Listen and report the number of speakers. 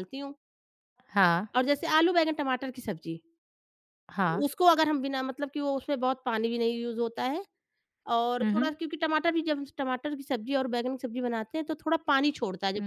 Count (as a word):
two